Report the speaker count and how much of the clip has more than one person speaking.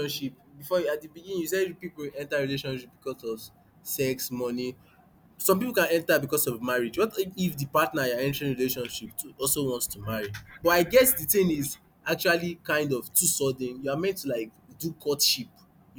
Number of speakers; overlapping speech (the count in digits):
1, no overlap